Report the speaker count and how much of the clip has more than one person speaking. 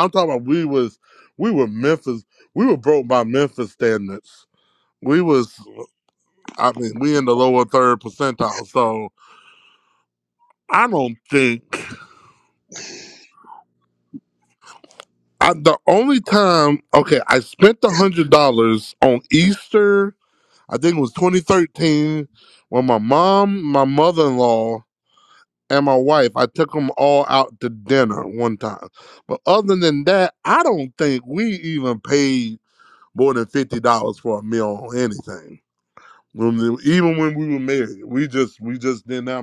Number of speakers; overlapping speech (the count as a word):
one, no overlap